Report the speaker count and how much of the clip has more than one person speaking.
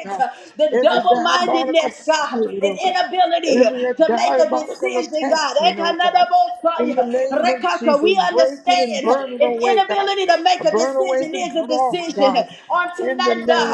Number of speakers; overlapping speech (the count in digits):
2, about 71%